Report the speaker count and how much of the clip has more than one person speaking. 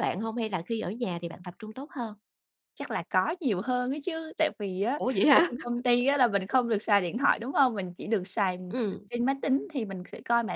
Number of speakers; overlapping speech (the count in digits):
2, about 2%